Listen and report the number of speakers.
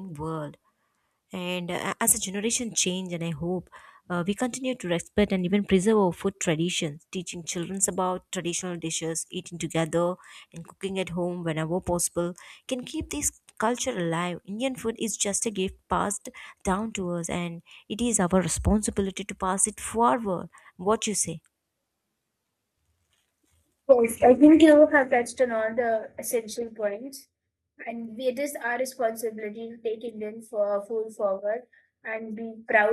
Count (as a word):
two